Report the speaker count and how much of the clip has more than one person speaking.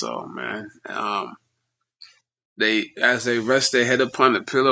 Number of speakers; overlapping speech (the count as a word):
one, no overlap